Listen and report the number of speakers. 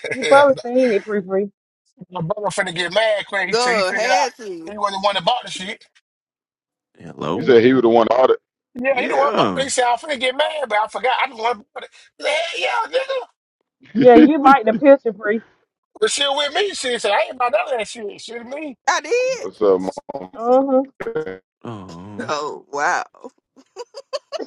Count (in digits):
5